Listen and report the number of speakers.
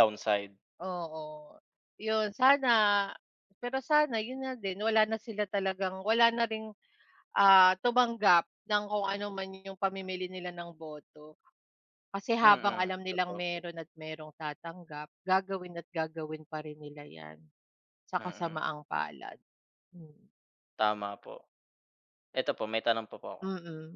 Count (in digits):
2